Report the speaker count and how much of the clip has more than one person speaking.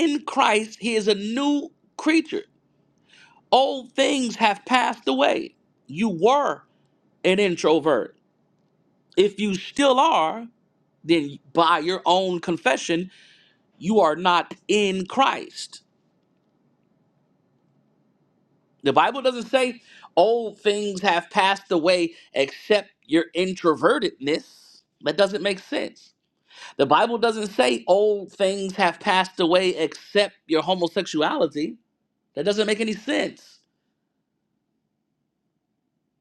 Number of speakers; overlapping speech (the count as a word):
one, no overlap